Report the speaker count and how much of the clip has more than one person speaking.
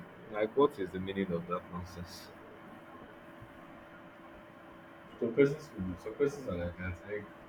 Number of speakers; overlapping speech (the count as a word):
two, no overlap